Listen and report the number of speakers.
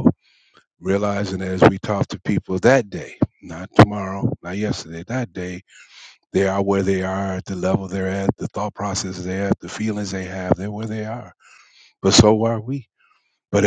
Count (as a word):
one